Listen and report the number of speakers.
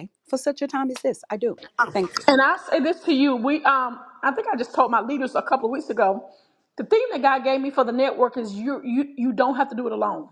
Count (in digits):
2